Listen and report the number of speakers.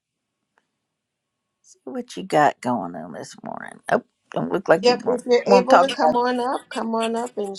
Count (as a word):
two